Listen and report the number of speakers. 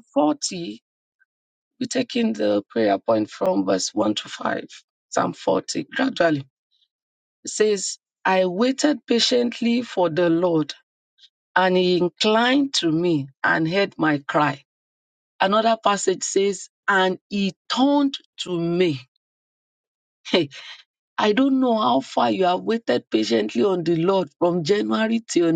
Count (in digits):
1